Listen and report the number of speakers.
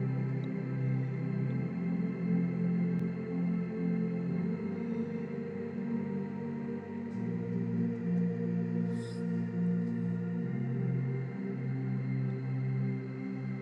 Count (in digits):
0